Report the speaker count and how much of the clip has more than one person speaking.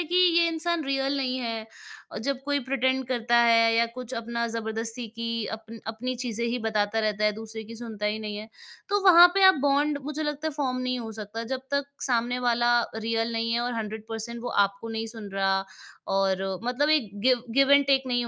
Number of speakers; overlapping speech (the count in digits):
1, no overlap